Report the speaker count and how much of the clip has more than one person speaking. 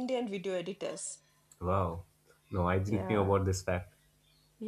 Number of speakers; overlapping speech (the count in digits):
2, about 10%